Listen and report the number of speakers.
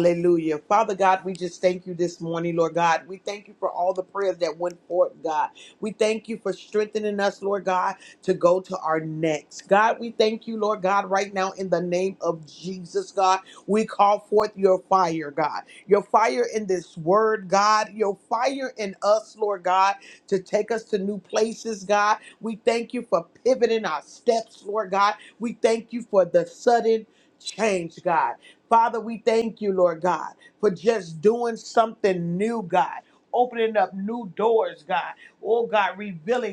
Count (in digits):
1